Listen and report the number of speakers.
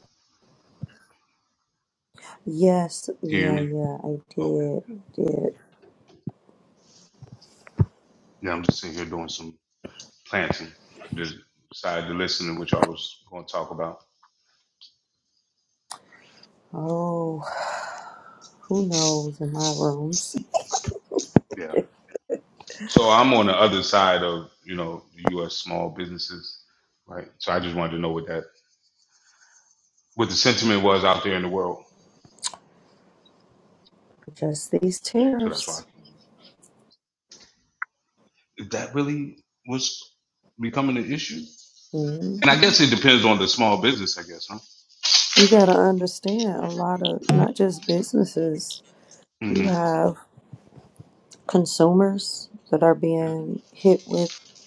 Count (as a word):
two